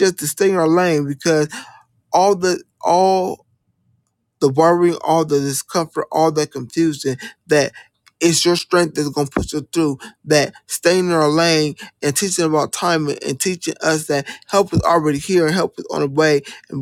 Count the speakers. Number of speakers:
1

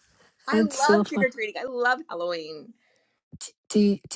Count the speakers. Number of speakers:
2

